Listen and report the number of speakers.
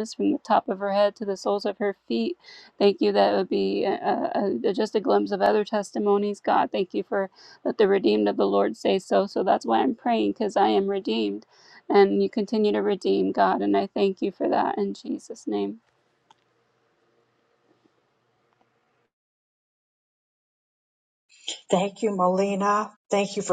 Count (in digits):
2